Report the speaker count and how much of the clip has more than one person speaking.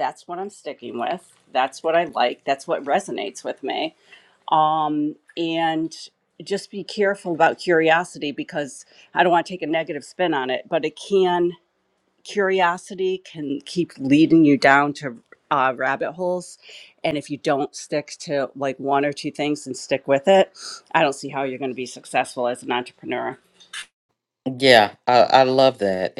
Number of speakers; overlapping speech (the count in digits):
2, no overlap